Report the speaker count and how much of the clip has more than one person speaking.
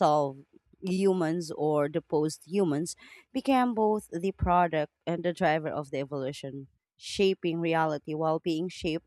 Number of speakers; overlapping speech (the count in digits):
1, no overlap